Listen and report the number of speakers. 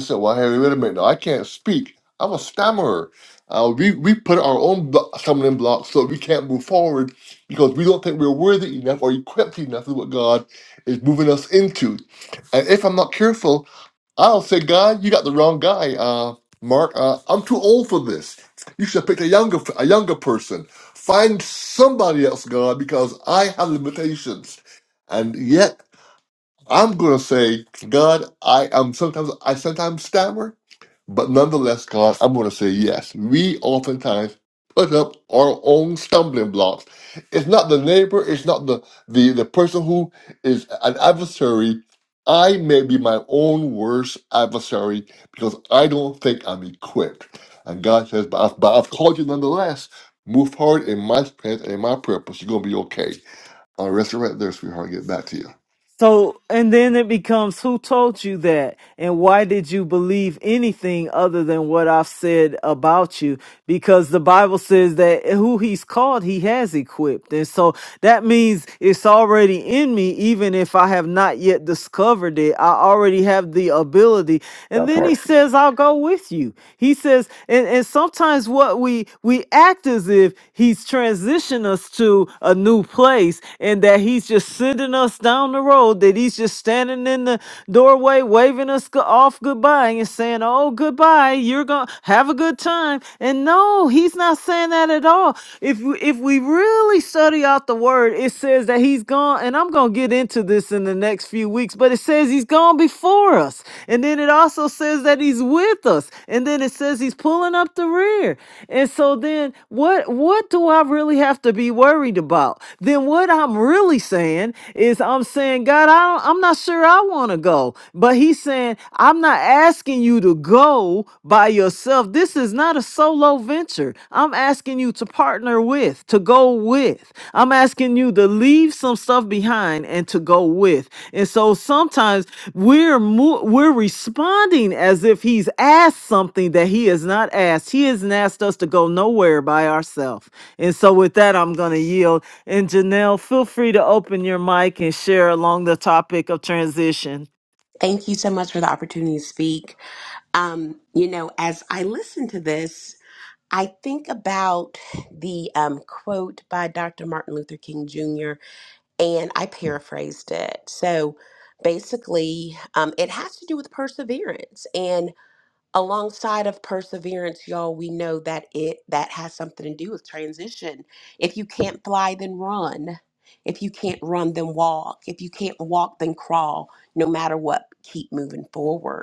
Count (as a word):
three